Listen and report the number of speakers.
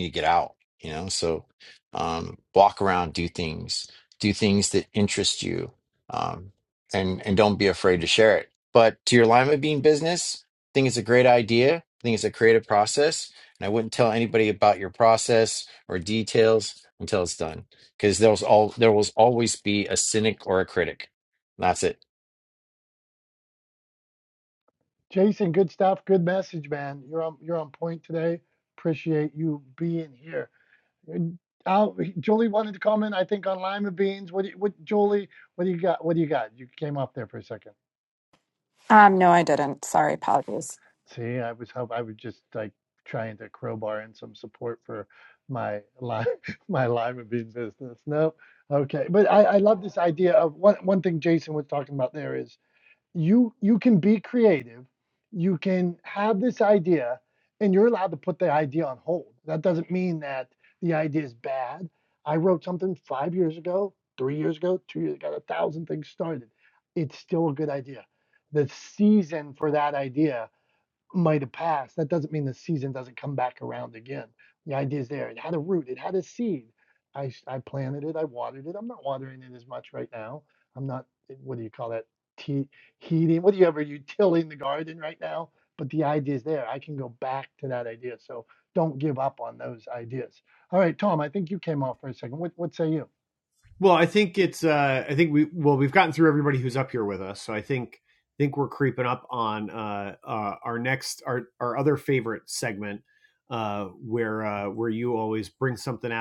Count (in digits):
4